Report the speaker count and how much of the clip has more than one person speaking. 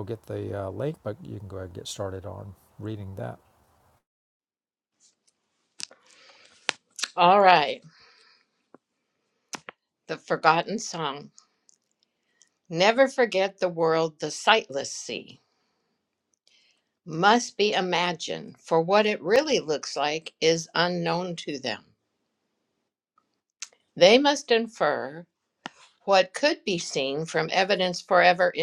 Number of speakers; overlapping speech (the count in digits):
2, no overlap